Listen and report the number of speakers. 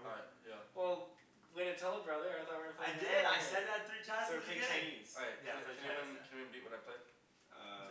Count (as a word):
three